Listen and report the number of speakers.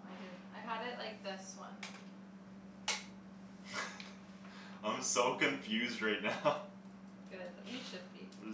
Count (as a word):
two